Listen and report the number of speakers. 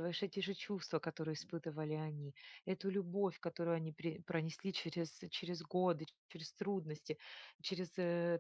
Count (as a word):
one